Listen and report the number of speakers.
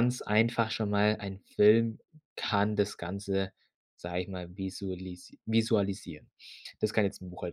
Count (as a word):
one